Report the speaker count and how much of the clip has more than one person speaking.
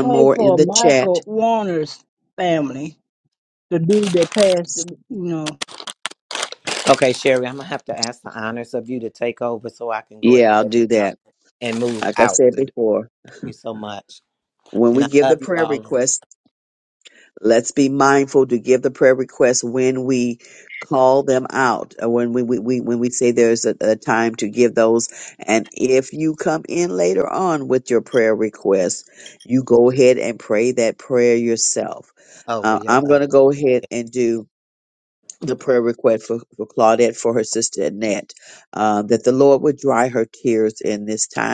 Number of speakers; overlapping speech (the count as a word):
three, about 9%